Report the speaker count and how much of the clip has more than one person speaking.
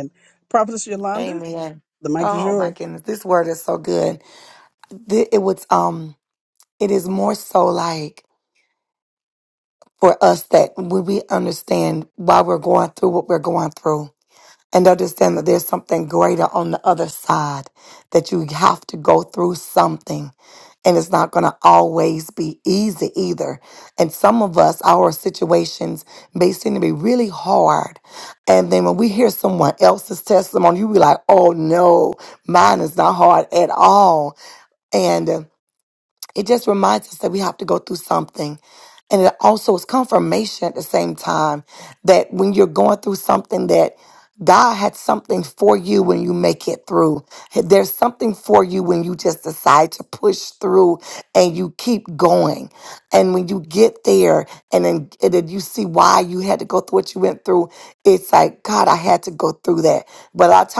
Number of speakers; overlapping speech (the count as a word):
two, about 1%